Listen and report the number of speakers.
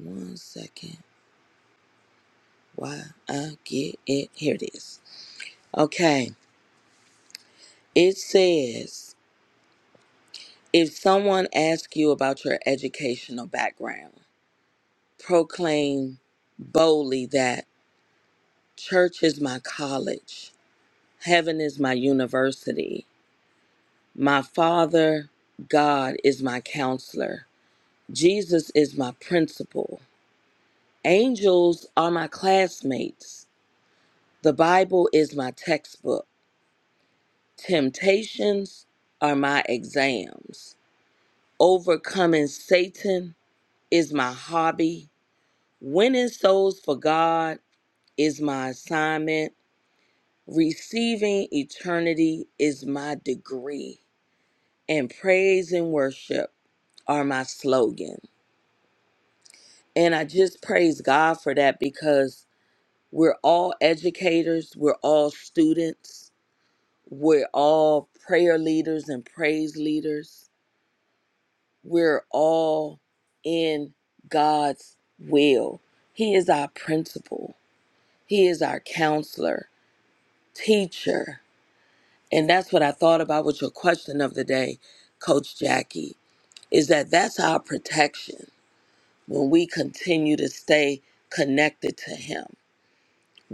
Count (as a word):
one